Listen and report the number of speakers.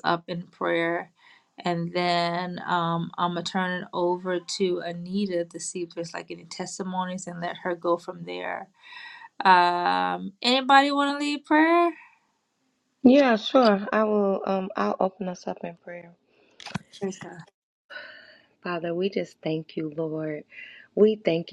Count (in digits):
2